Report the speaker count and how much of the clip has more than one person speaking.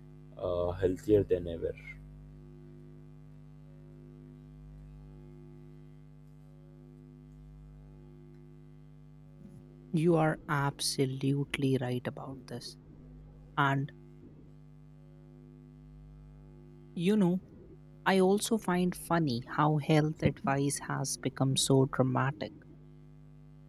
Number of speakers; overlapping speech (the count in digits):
2, no overlap